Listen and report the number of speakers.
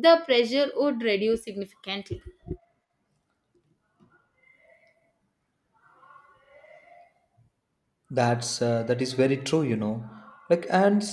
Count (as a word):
two